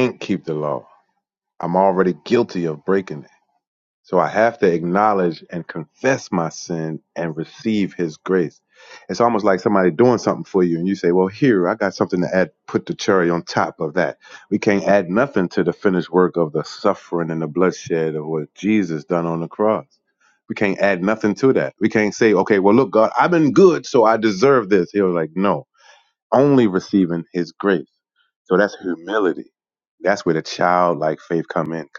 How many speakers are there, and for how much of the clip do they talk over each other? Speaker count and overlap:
1, no overlap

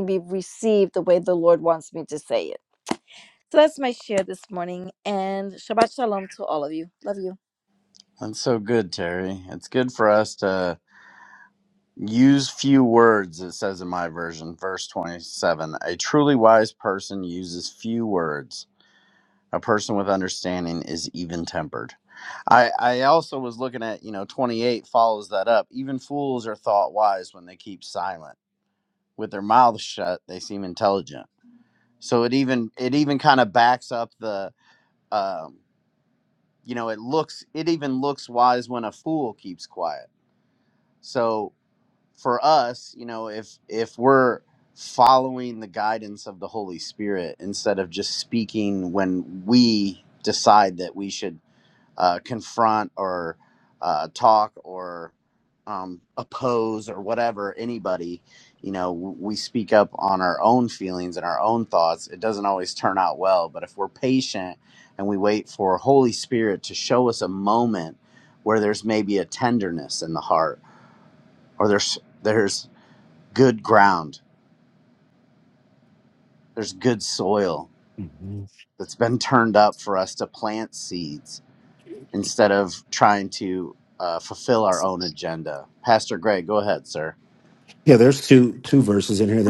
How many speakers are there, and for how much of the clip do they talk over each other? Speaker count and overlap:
3, no overlap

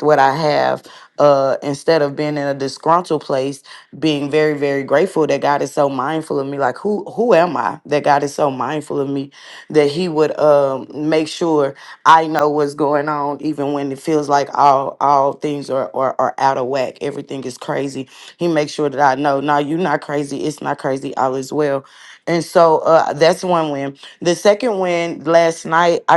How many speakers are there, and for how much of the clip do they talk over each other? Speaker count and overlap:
1, no overlap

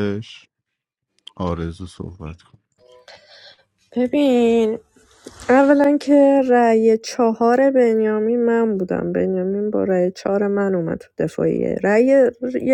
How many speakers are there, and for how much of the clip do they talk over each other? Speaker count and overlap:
2, no overlap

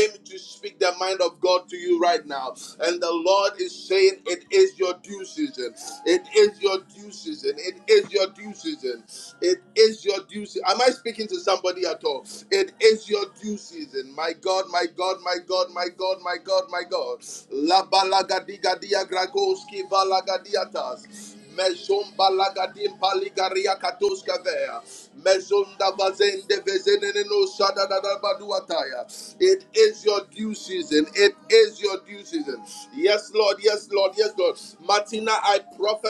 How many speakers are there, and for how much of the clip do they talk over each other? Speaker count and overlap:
1, no overlap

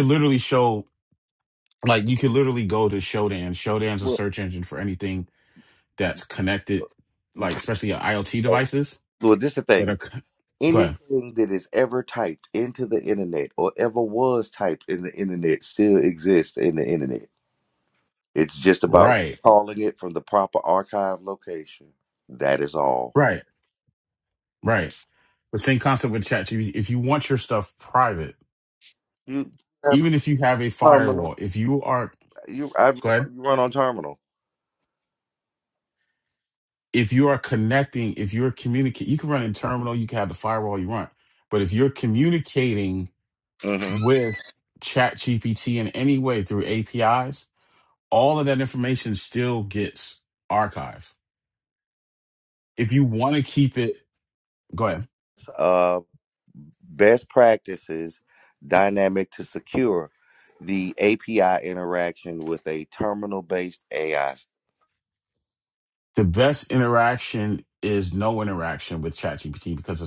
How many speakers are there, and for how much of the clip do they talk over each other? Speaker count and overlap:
2, about 3%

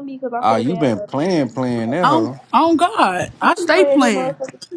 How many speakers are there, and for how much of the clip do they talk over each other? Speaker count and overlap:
3, about 45%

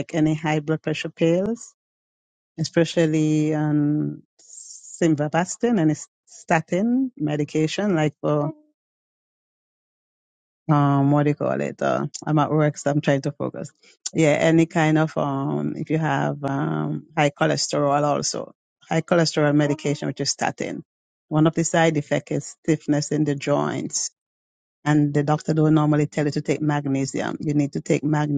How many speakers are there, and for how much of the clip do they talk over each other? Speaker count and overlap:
1, no overlap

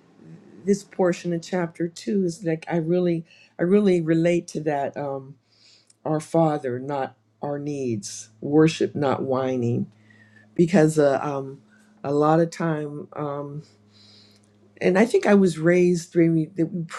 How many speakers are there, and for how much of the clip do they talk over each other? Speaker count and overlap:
1, no overlap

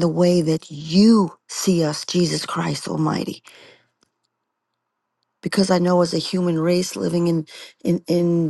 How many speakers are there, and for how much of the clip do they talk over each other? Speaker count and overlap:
1, no overlap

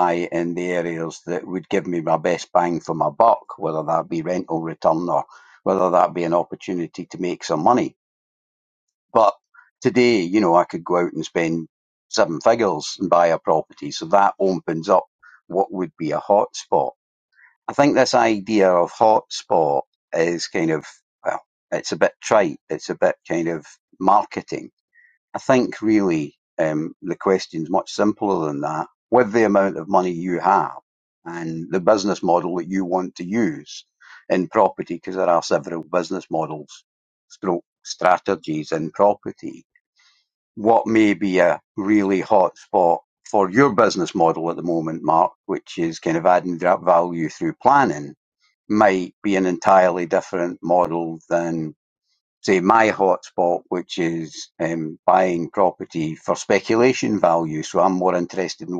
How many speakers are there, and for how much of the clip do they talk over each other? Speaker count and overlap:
1, no overlap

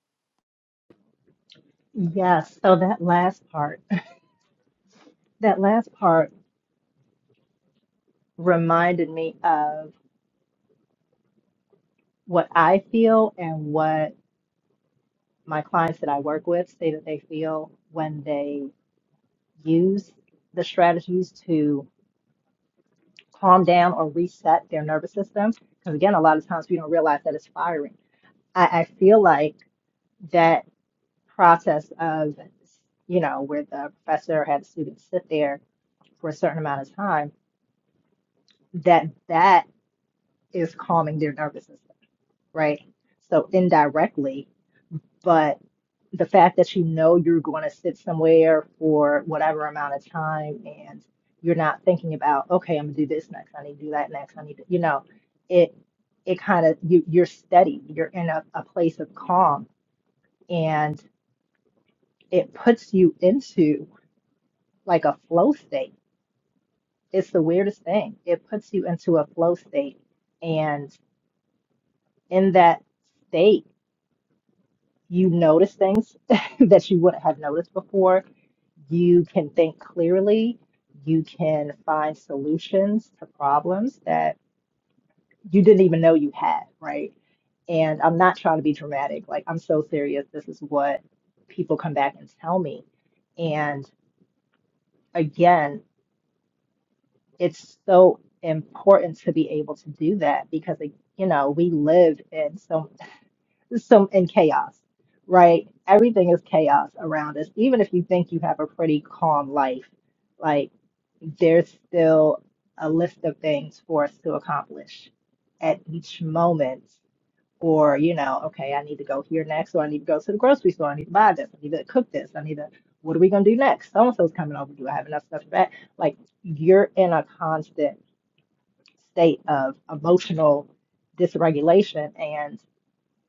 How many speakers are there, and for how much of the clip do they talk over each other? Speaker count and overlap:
1, no overlap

